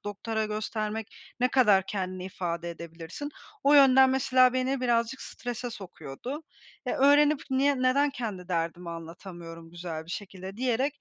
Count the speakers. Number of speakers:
one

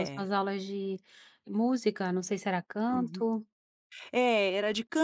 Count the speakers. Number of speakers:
two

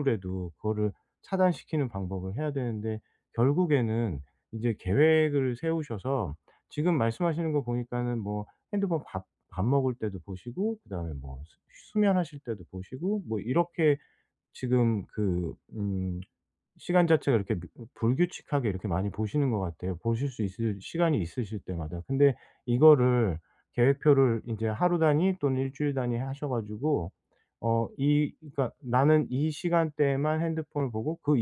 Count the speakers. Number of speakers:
one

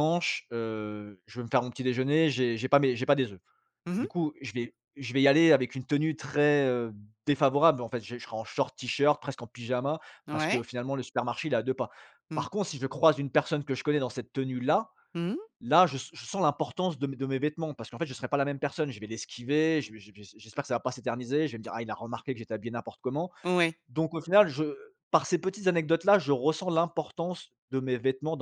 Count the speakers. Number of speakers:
two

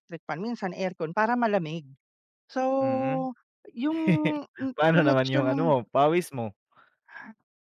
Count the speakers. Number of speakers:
two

